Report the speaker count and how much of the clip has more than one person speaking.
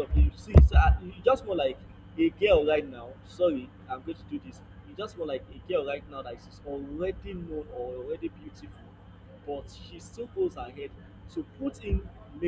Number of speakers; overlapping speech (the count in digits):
1, no overlap